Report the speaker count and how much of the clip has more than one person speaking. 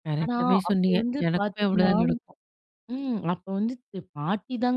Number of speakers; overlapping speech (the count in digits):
2, about 37%